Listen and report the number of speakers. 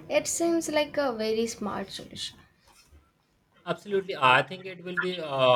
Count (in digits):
2